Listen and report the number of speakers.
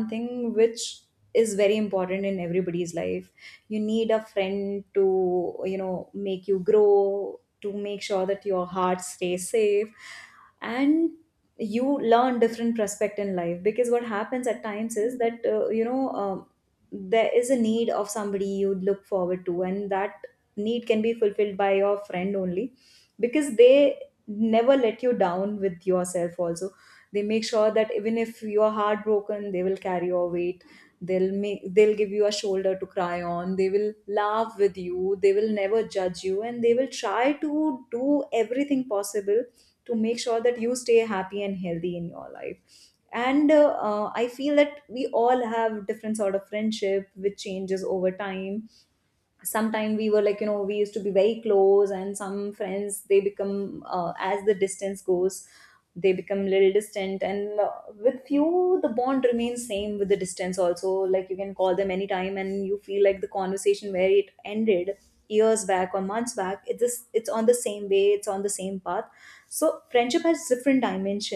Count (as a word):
one